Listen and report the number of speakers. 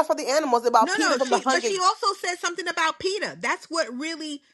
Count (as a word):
two